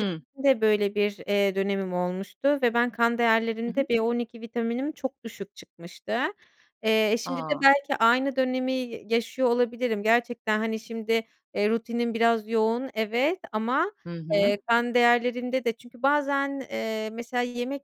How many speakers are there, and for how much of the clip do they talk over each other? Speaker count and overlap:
2, about 5%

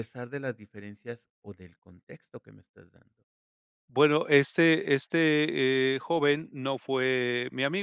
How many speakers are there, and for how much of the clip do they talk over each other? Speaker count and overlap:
2, no overlap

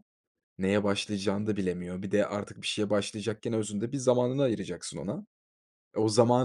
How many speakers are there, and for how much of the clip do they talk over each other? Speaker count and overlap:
1, no overlap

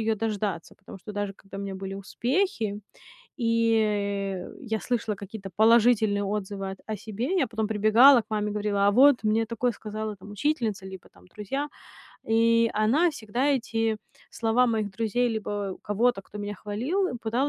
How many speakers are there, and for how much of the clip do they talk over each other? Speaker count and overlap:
1, no overlap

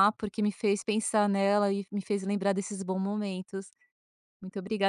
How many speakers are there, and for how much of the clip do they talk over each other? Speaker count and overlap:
1, no overlap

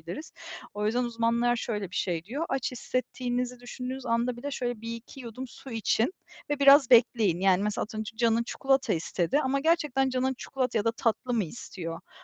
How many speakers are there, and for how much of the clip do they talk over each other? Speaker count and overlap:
1, no overlap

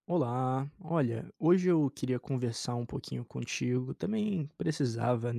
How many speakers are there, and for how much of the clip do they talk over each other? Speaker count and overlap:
1, no overlap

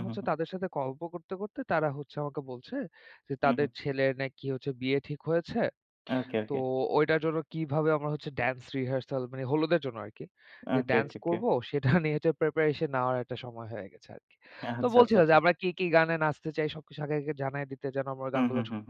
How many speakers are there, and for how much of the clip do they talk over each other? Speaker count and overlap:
2, about 13%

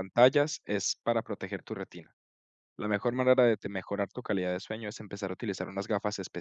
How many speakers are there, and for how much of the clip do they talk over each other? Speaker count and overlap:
1, no overlap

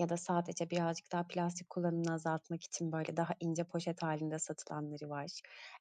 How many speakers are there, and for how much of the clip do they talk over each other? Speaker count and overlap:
1, no overlap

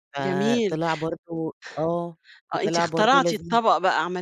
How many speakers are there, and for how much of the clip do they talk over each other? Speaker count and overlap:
2, about 39%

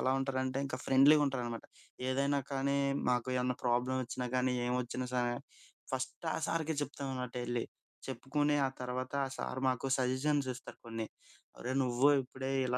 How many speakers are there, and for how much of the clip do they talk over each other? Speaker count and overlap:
1, no overlap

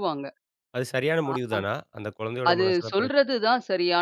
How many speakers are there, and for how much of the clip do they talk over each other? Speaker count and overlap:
2, about 25%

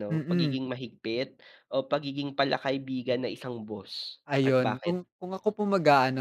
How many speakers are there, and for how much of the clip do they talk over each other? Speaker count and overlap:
2, about 18%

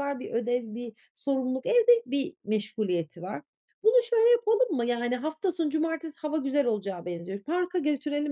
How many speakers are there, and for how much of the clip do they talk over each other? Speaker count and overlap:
1, no overlap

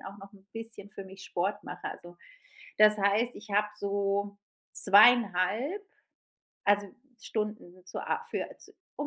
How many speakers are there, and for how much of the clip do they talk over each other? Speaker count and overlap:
1, no overlap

